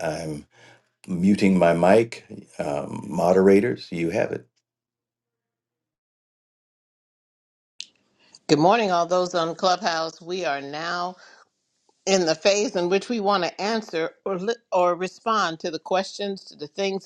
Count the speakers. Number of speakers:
2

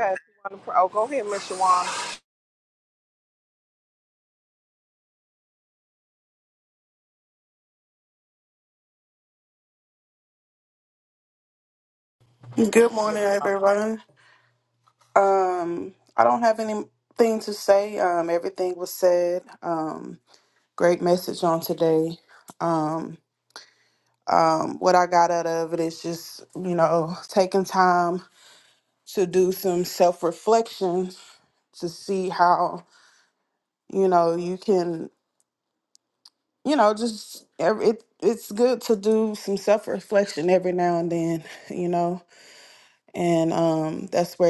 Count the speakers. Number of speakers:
2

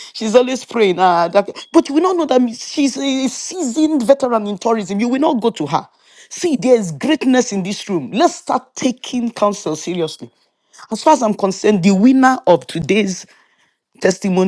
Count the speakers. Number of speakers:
1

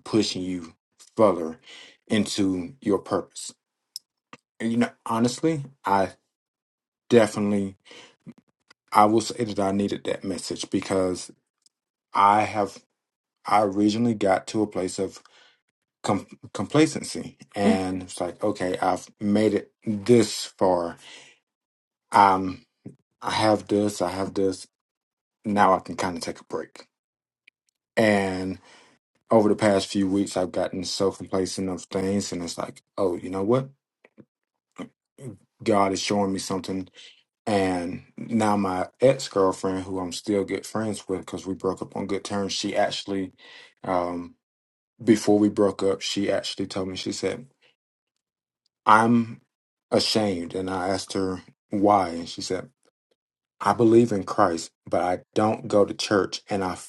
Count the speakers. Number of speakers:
1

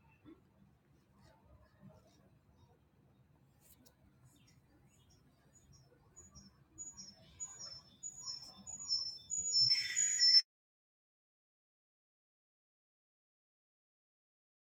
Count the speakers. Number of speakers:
0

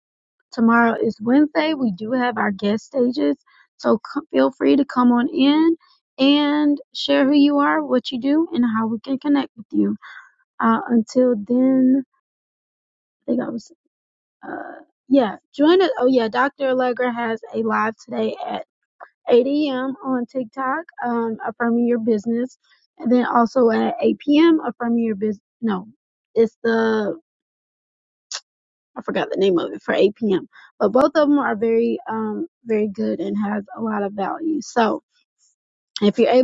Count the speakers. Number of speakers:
1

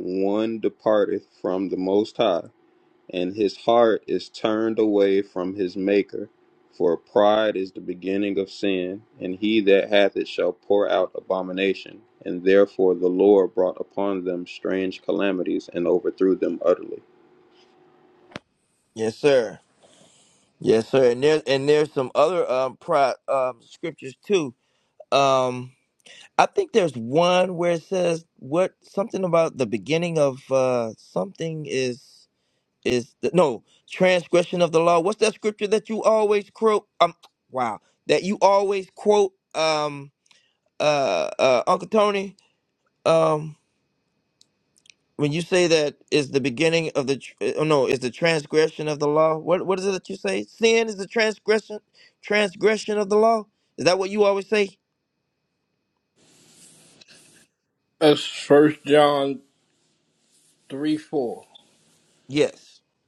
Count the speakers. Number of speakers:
3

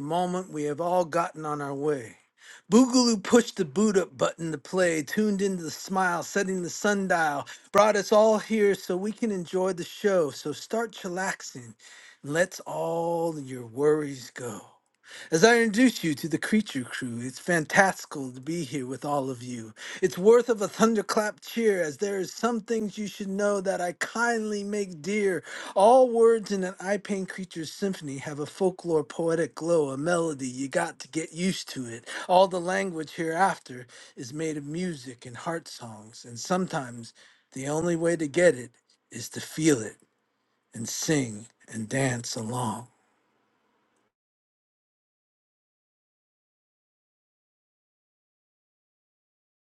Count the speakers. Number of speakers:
1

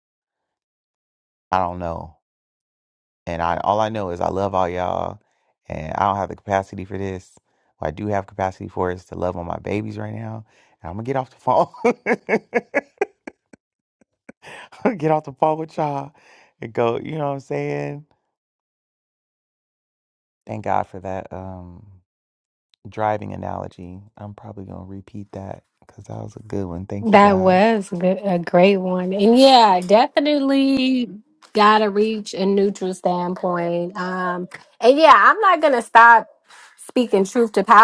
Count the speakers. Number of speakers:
2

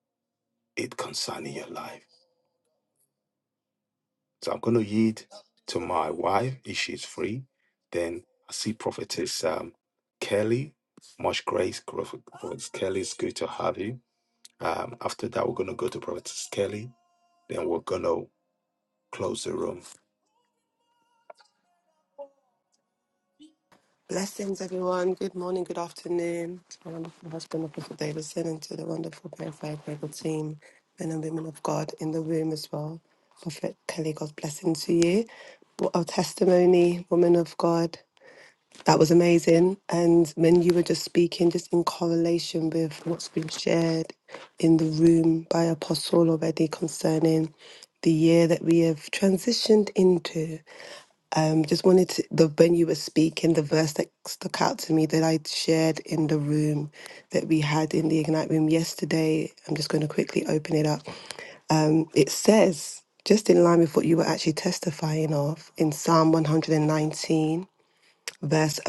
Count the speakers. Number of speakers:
2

